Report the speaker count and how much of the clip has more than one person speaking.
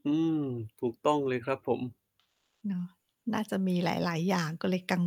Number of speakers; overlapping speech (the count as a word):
two, no overlap